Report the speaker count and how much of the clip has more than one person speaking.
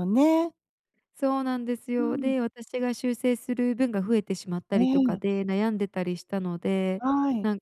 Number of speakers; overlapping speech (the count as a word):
two, about 11%